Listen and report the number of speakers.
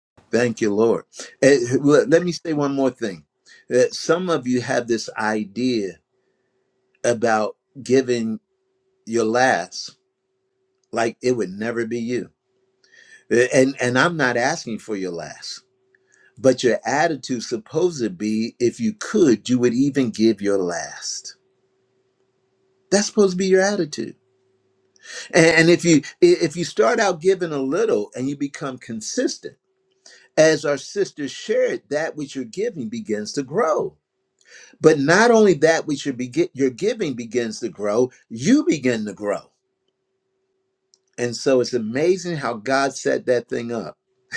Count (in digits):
1